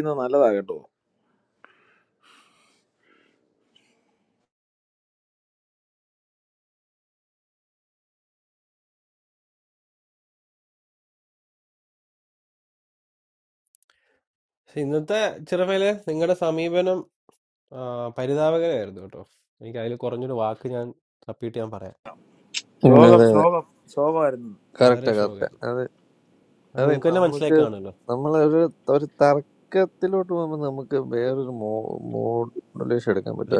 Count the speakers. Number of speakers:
3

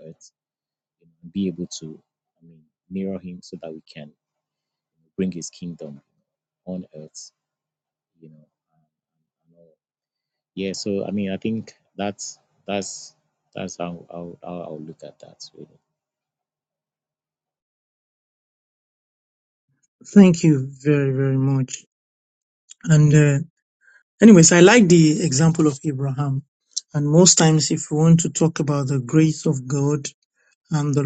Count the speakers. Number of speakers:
2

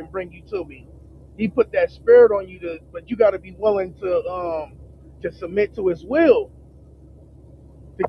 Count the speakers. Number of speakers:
1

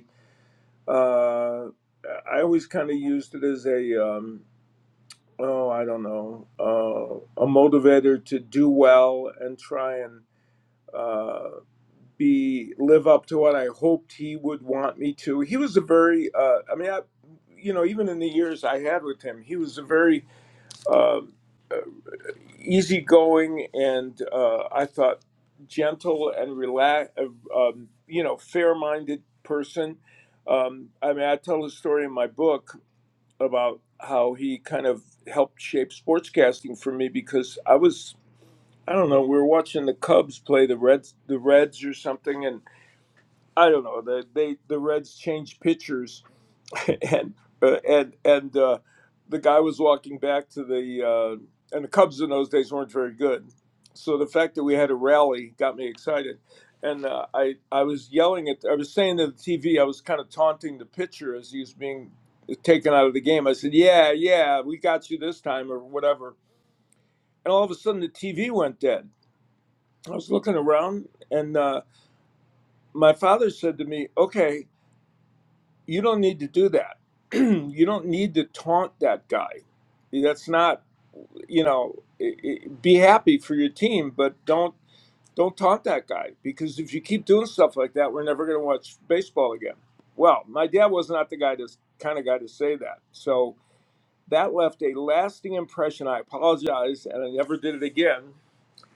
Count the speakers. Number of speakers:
1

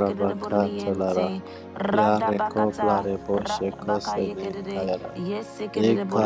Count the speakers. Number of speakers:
2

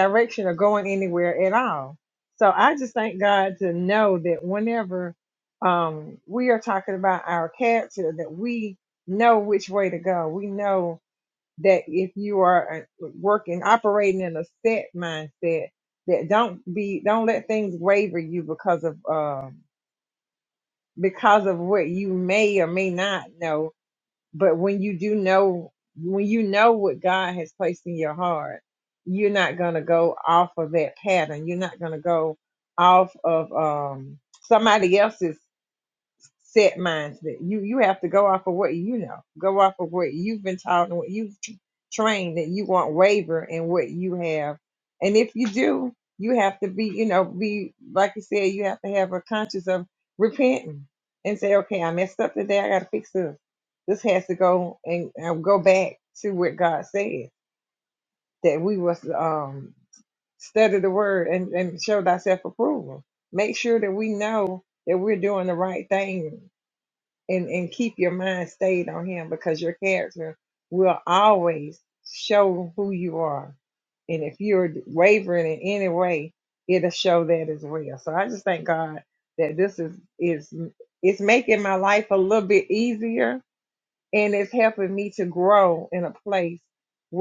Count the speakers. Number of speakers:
1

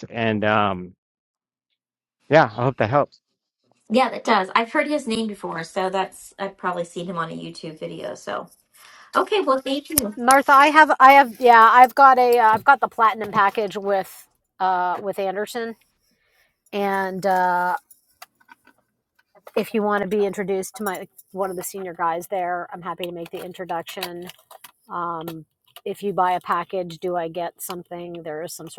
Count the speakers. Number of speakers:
3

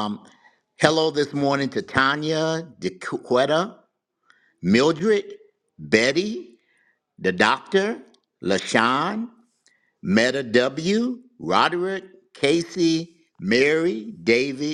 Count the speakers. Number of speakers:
1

